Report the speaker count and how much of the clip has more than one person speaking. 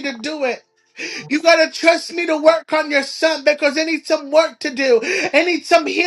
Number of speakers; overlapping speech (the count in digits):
1, no overlap